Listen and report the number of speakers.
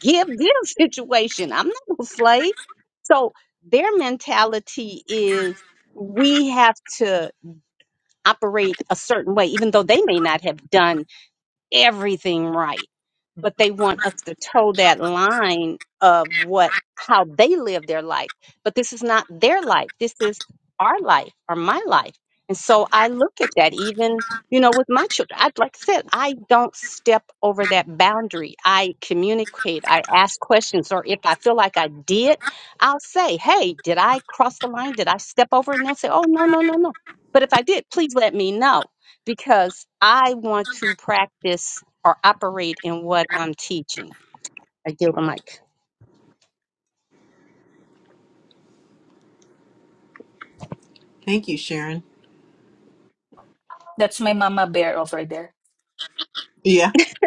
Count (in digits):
3